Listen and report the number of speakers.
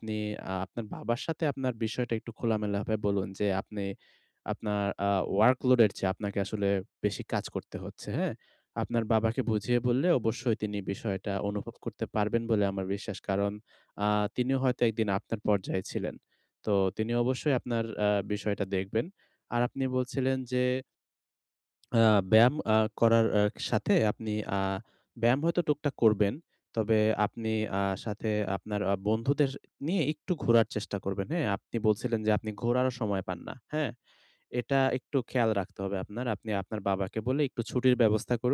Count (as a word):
one